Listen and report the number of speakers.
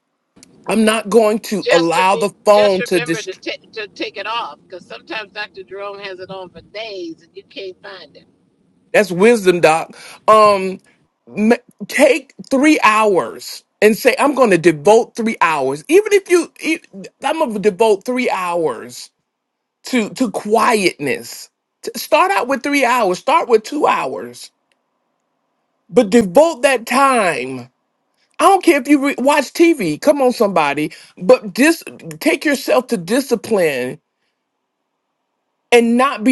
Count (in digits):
2